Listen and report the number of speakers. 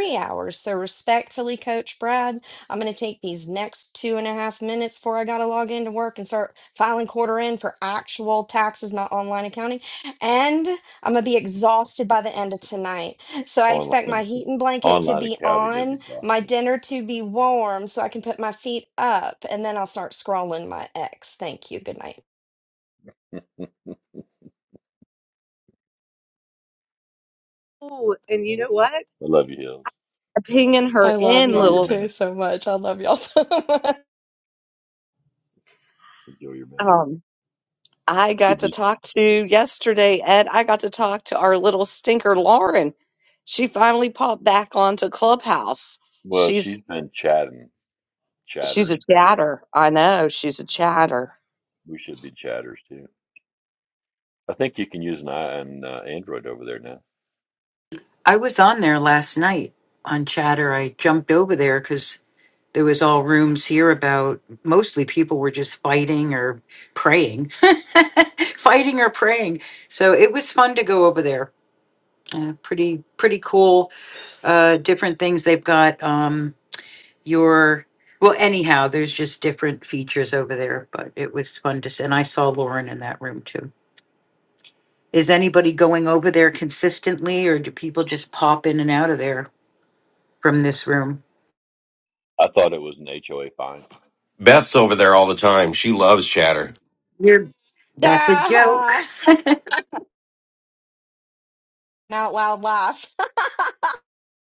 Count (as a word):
five